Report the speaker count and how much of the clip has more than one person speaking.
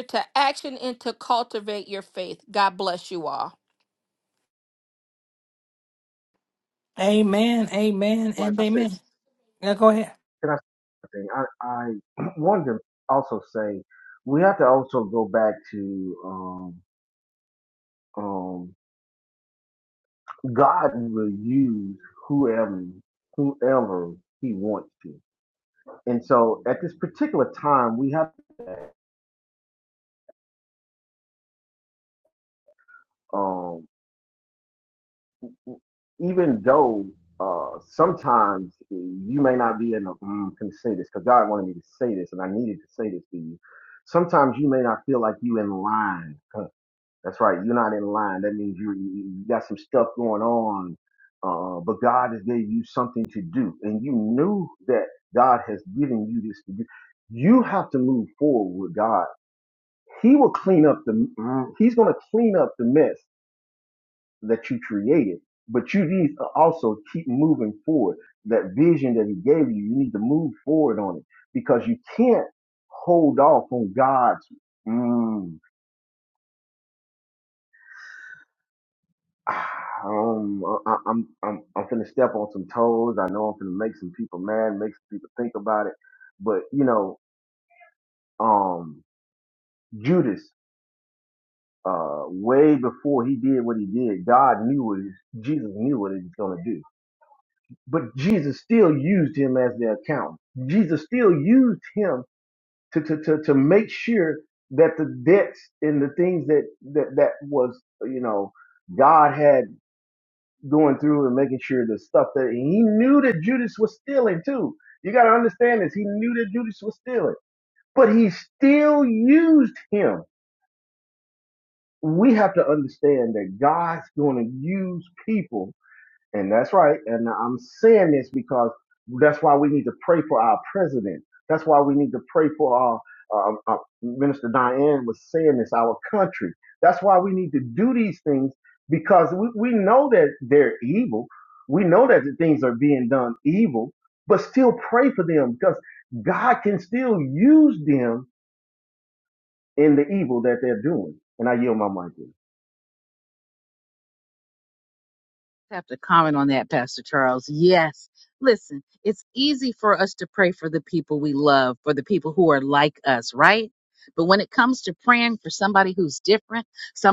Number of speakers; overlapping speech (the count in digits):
4, under 1%